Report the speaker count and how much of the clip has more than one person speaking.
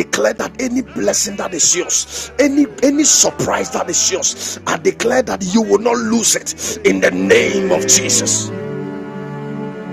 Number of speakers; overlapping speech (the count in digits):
1, no overlap